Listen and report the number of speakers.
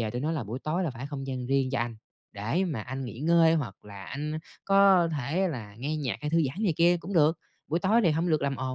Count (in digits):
1